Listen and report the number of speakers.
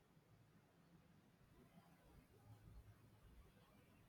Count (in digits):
0